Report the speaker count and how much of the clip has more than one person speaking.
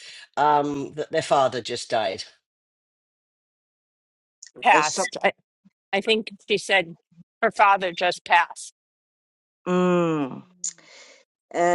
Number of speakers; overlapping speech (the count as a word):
three, about 3%